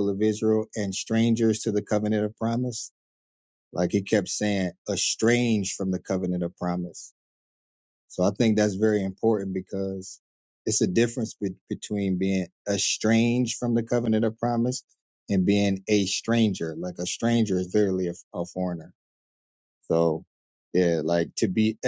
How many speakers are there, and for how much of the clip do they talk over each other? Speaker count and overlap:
1, no overlap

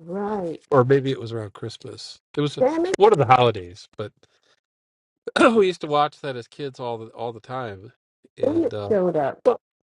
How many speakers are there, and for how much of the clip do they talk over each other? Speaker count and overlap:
2, about 5%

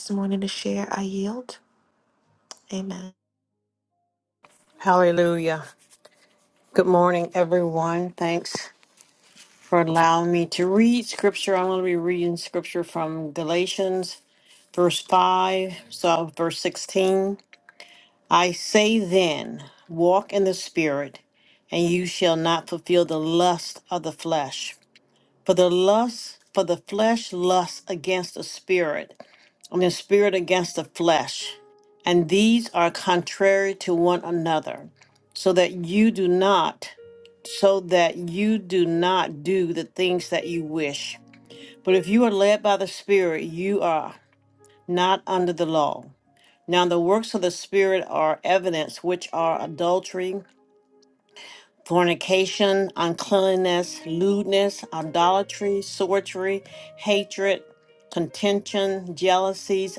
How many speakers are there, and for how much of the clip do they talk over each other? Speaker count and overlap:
2, no overlap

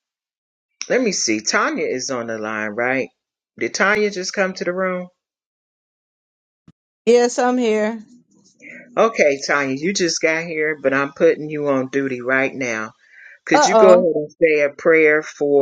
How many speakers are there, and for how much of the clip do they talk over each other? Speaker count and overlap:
2, about 3%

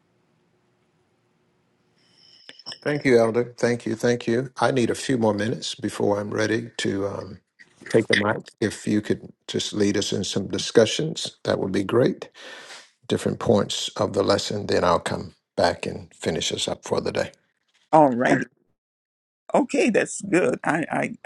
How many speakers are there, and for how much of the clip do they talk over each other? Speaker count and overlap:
2, no overlap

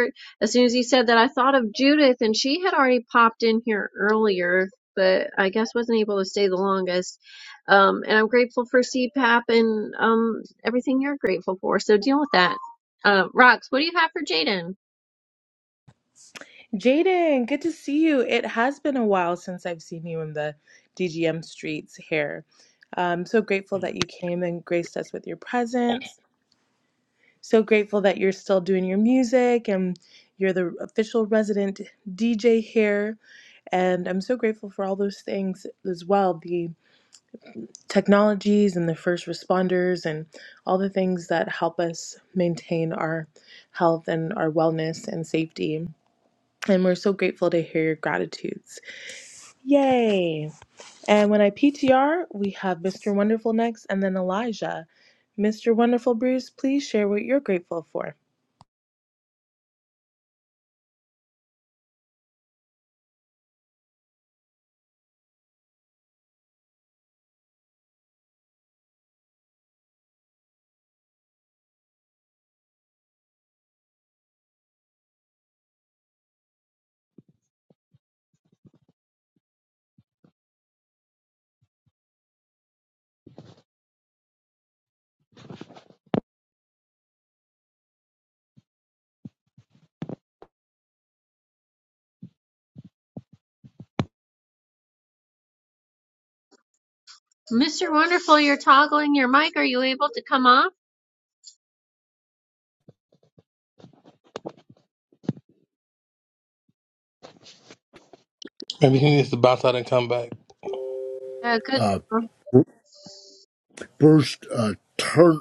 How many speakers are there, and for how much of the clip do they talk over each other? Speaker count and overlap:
4, under 1%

